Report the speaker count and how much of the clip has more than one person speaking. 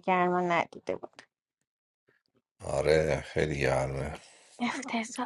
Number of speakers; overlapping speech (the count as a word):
two, no overlap